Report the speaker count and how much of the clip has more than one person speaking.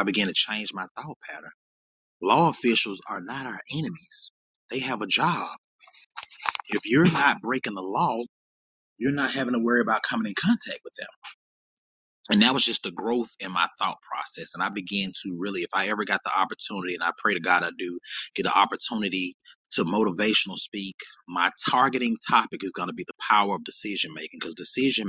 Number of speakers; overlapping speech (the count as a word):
one, no overlap